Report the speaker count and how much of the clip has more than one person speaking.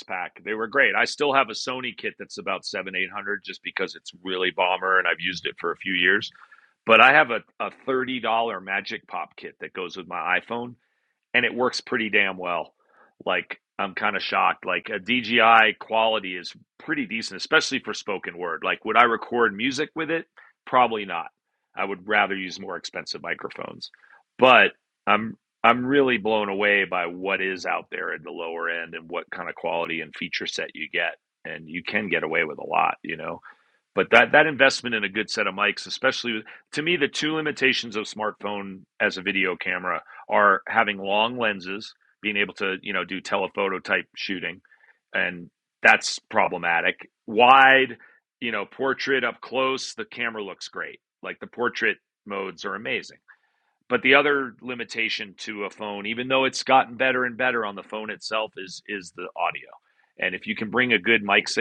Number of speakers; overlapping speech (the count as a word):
one, no overlap